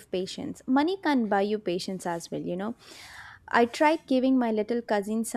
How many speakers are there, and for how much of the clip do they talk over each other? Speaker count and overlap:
1, no overlap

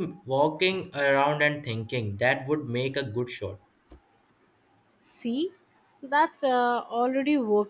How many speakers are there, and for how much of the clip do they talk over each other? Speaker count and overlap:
2, no overlap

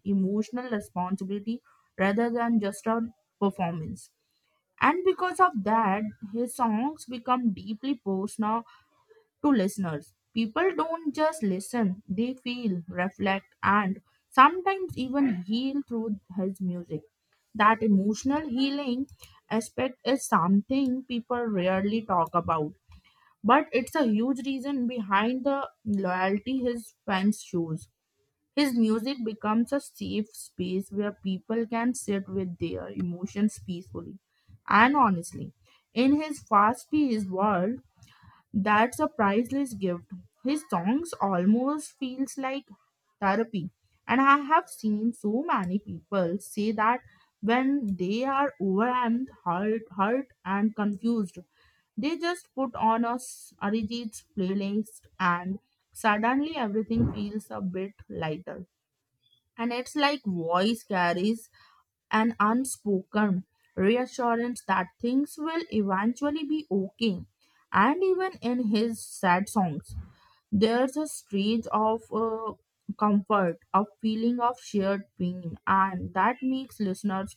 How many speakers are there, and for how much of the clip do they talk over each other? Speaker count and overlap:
1, no overlap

